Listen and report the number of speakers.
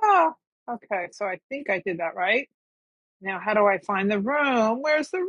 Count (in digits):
1